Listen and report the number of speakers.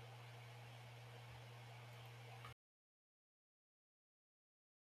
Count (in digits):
0